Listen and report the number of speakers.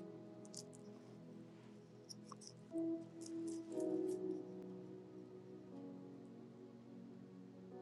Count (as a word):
zero